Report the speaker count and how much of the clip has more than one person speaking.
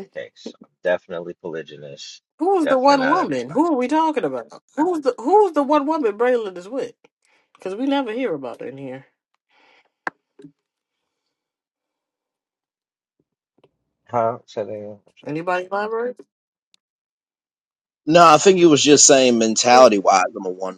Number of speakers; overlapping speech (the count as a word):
three, about 5%